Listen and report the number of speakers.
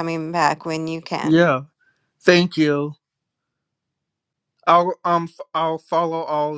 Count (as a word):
two